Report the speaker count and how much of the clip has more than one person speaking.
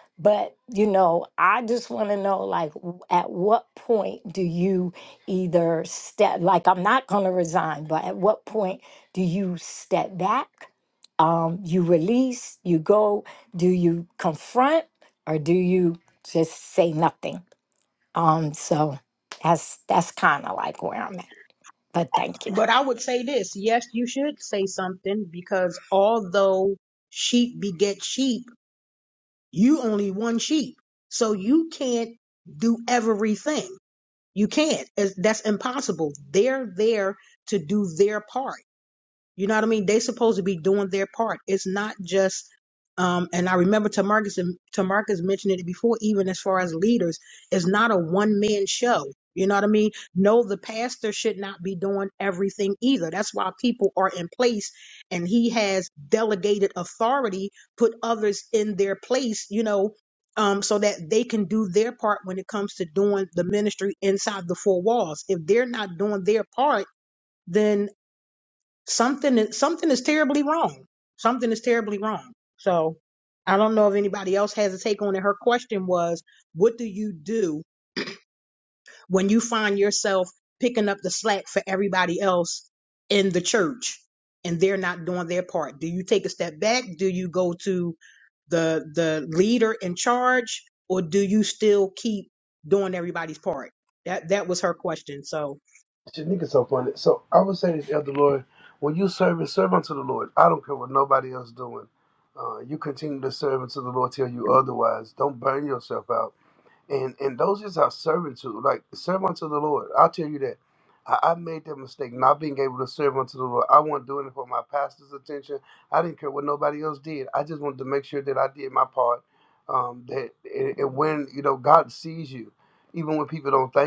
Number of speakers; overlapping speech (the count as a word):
three, under 1%